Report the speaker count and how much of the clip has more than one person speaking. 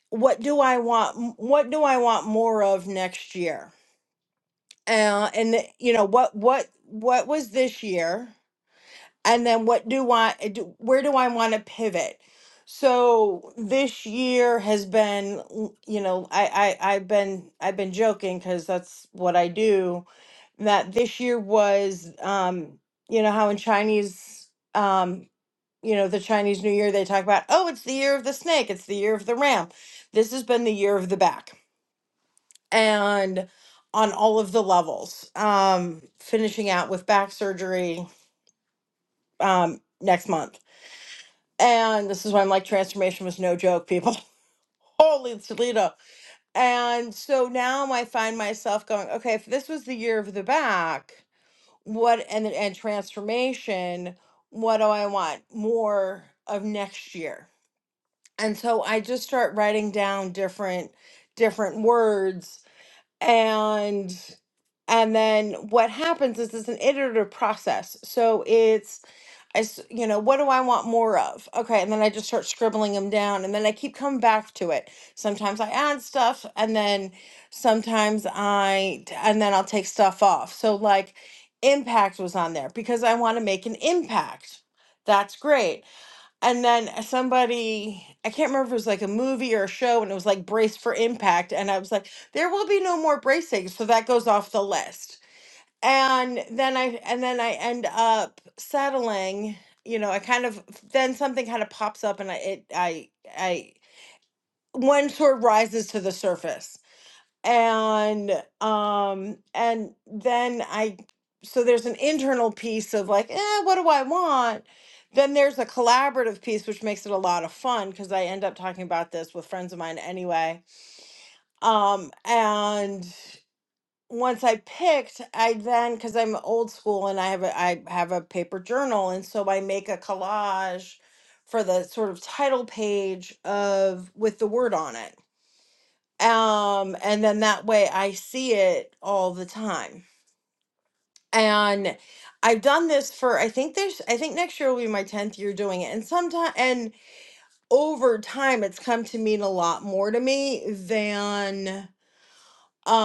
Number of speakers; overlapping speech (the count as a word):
one, no overlap